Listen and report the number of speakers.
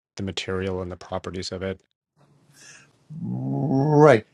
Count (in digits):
2